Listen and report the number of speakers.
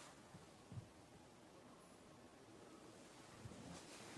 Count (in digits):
0